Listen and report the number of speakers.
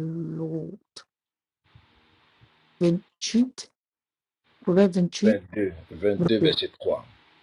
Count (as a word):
two